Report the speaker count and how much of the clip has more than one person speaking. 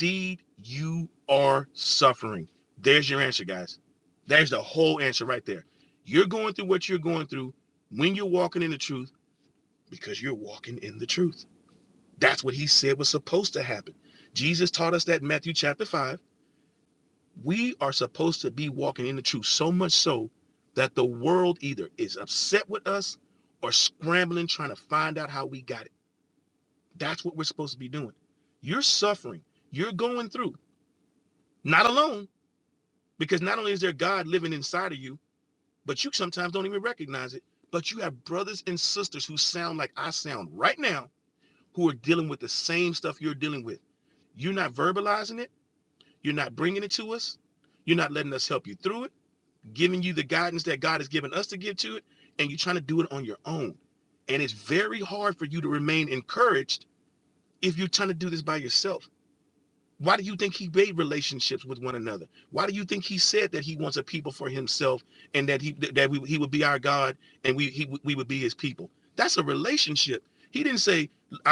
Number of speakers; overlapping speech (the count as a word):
one, no overlap